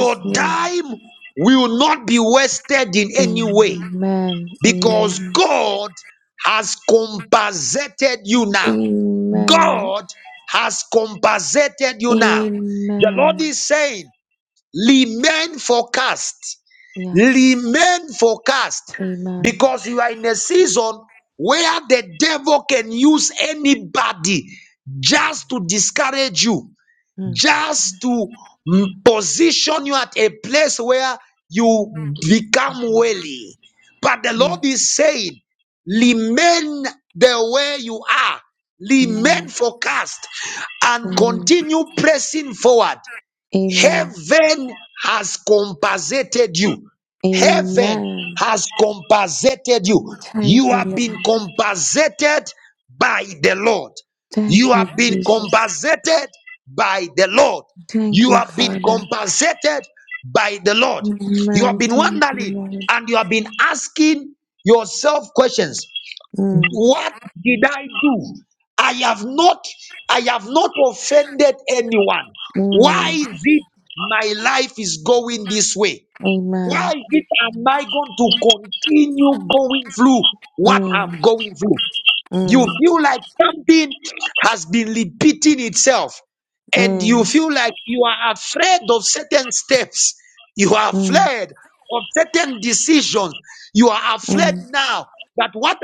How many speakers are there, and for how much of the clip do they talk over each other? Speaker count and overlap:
2, about 14%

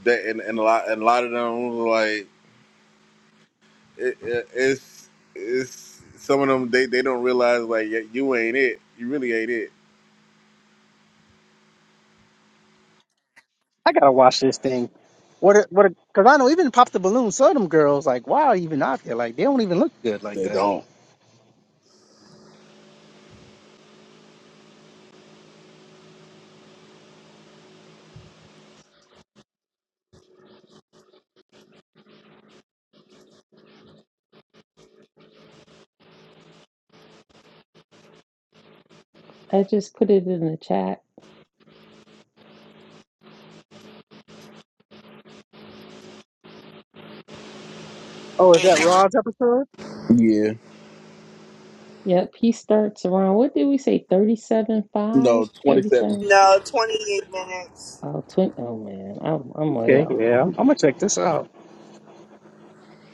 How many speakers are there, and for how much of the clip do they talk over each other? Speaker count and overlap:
4, about 3%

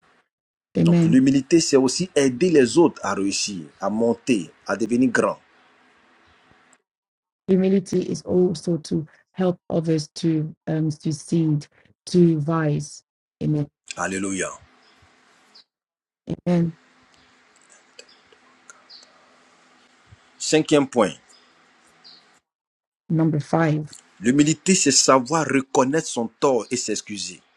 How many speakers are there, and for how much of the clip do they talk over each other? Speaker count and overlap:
2, about 1%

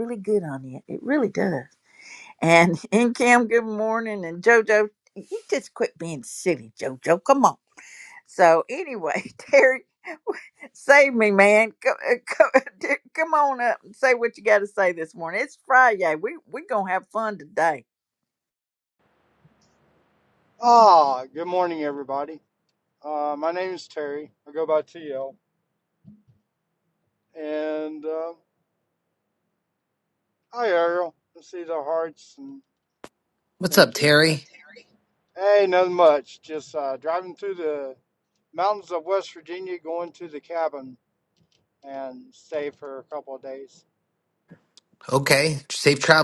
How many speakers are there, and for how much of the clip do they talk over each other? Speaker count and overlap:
3, about 1%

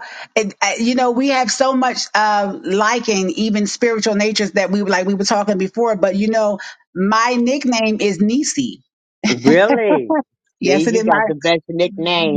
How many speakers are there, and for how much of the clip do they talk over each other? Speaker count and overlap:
2, about 7%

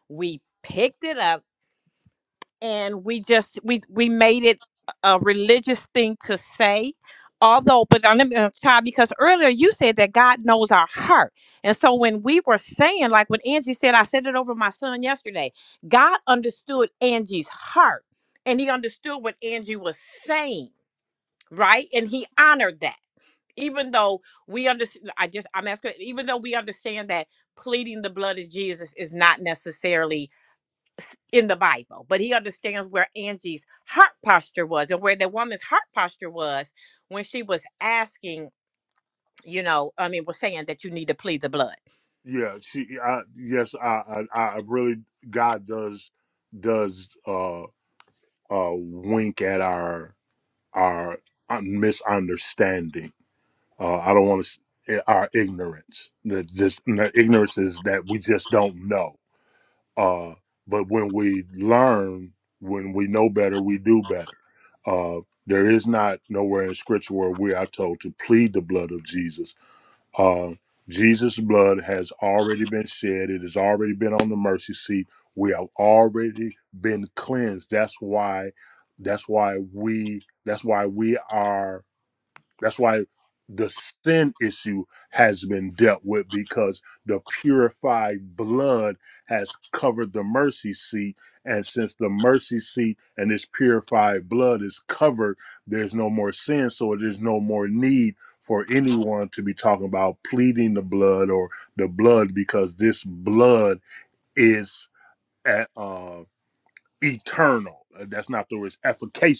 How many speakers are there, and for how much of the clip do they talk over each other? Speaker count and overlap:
2, no overlap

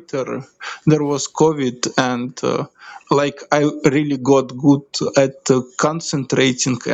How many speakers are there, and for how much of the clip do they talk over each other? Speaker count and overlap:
1, no overlap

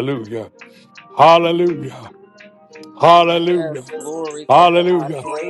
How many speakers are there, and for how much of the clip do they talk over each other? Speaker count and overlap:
2, about 24%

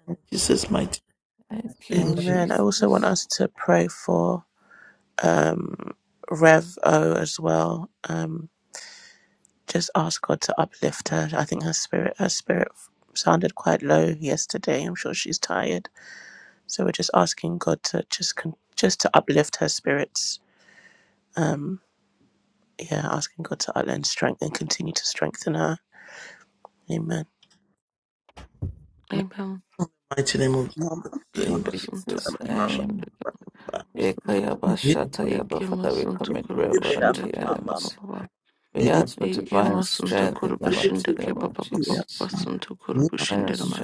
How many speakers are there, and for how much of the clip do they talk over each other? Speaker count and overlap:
4, about 23%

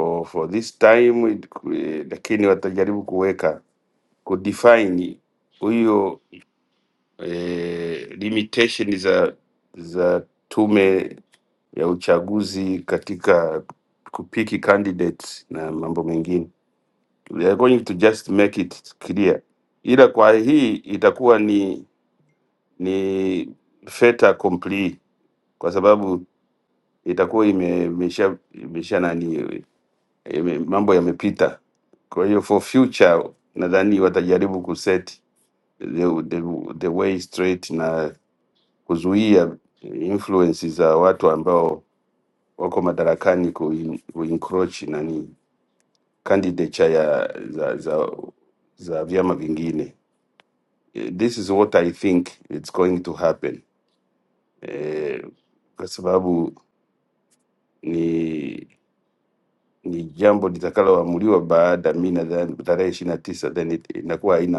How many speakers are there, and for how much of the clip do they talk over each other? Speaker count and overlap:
1, no overlap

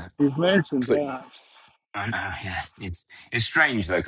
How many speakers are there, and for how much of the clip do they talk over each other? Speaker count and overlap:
2, about 5%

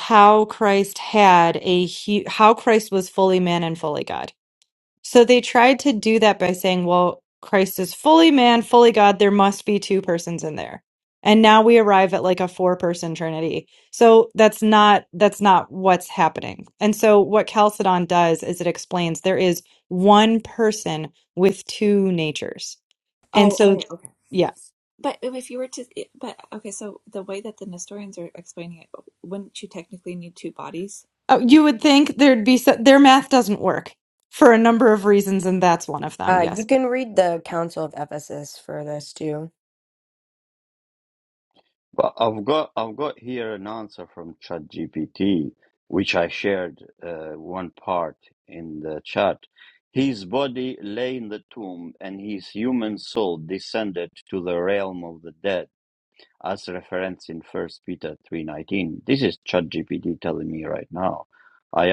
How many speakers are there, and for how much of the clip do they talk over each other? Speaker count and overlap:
4, about 1%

